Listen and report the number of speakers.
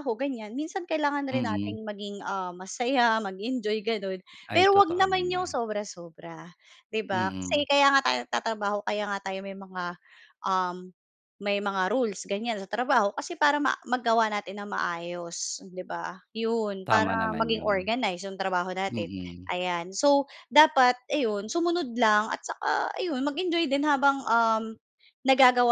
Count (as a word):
two